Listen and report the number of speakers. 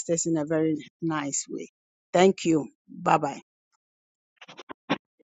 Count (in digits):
1